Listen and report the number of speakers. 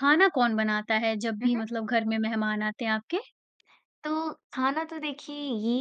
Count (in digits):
2